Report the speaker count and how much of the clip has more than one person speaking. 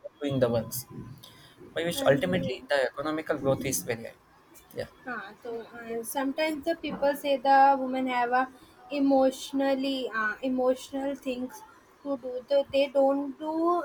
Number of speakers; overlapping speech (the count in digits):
2, about 4%